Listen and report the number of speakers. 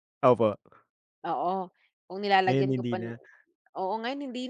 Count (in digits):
2